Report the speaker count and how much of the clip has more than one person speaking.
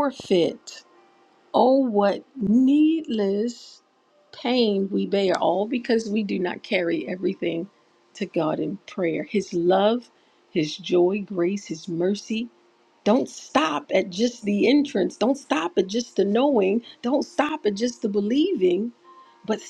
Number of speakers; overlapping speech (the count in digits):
1, no overlap